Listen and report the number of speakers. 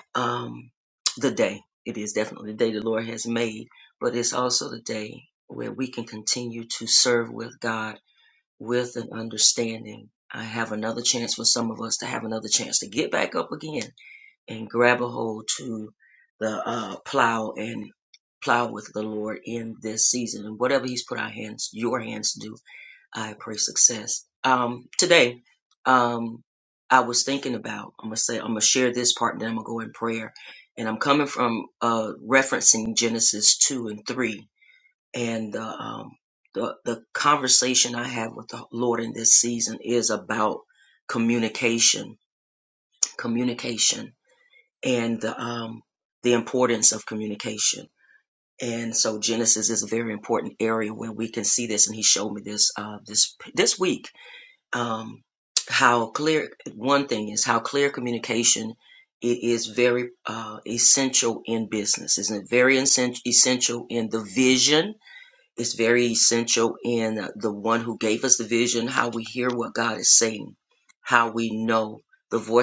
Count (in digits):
1